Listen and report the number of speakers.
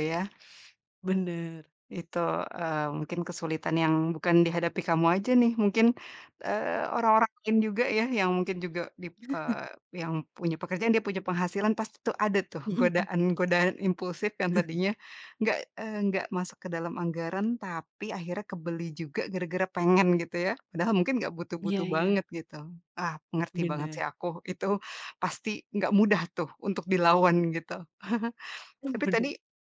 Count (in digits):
2